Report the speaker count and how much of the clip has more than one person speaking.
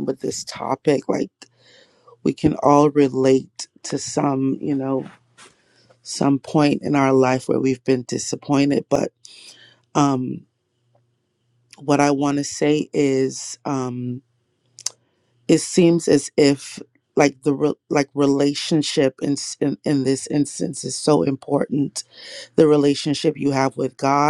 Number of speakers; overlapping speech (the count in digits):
1, no overlap